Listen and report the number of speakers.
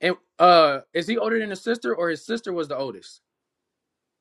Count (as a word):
one